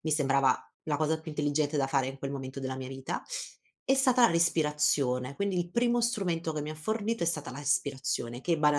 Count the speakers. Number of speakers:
1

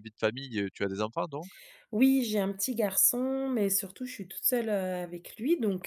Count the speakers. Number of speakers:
2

